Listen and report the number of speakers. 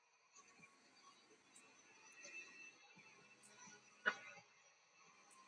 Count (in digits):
0